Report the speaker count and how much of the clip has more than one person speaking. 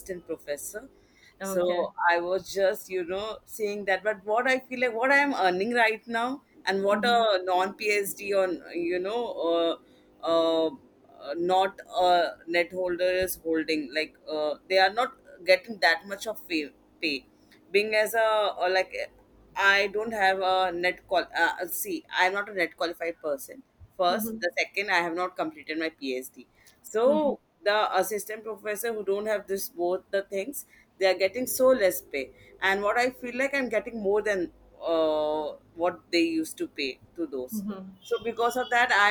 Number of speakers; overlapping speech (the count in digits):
2, about 3%